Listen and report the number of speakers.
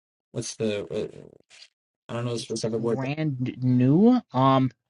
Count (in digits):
2